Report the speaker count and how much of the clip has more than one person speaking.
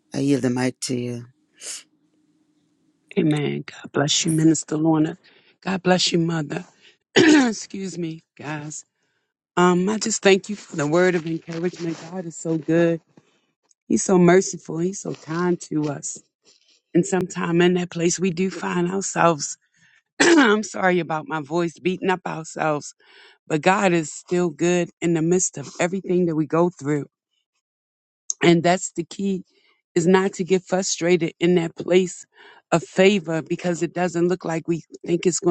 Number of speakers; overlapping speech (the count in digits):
2, no overlap